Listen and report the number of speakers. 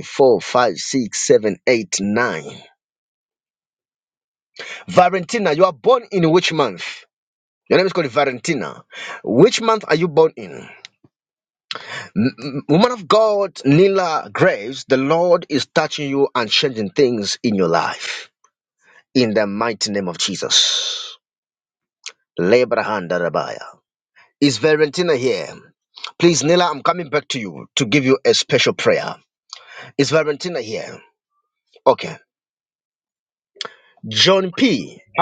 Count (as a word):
one